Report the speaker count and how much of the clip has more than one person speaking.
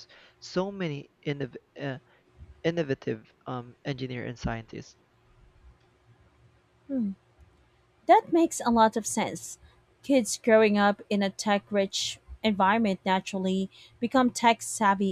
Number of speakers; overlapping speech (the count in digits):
2, no overlap